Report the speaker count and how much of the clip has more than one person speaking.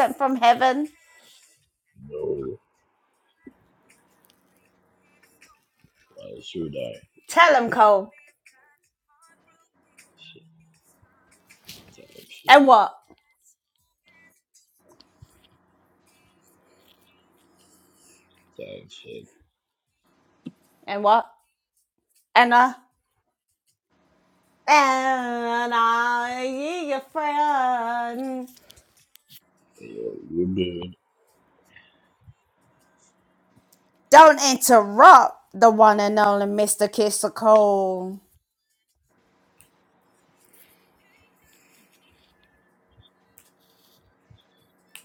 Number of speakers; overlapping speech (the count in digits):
2, about 1%